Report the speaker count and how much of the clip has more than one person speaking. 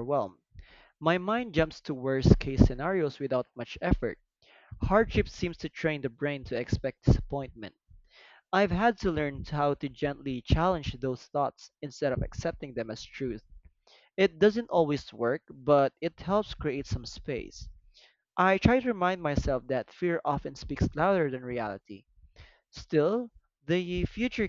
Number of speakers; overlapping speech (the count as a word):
one, no overlap